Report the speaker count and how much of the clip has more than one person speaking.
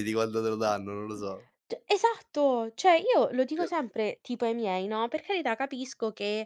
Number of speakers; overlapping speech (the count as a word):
two, about 2%